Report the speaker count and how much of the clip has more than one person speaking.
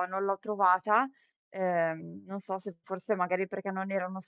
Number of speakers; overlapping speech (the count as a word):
one, no overlap